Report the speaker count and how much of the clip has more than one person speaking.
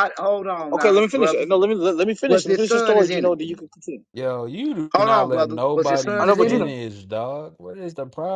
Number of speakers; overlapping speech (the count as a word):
three, about 43%